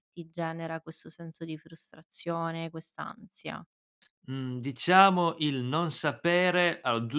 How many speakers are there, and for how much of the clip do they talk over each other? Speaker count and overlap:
two, no overlap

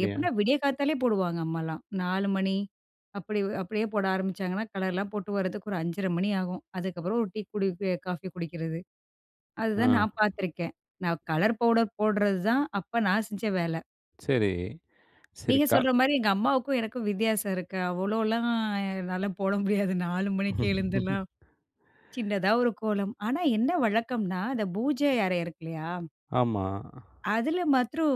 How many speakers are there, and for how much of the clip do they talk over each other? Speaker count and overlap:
two, about 3%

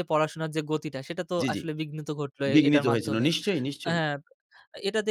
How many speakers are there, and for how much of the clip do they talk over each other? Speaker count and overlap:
two, about 23%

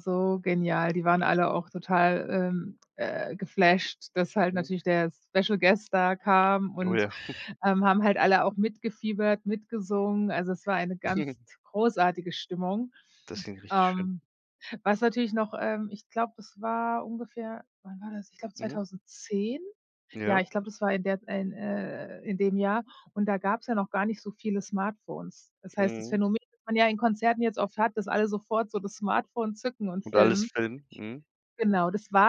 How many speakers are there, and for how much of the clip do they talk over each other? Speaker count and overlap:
two, about 6%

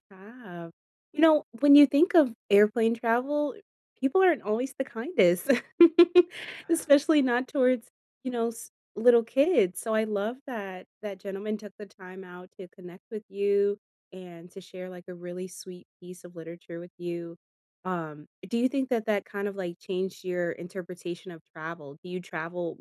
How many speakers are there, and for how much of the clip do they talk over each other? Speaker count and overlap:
one, no overlap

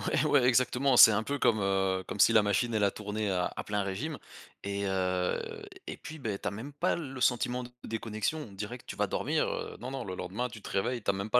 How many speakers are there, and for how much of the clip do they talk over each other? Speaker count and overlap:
one, no overlap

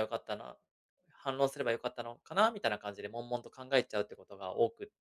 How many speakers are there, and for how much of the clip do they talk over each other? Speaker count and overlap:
one, no overlap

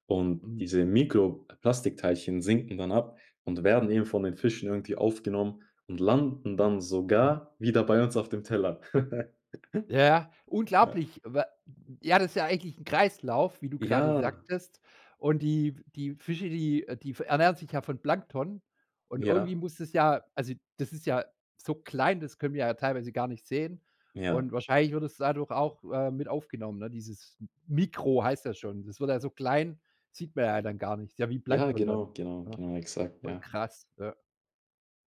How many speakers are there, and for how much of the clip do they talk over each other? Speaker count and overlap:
two, about 6%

